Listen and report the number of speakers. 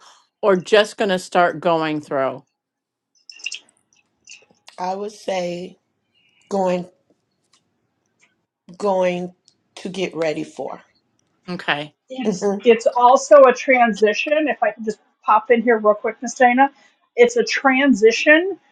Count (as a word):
three